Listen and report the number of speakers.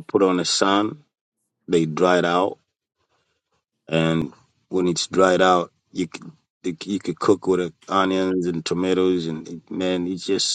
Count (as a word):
one